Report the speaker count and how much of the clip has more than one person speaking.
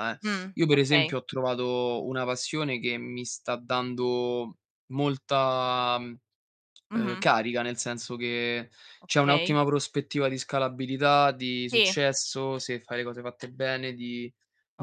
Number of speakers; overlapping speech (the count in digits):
2, about 9%